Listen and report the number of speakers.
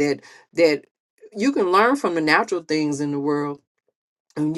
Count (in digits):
1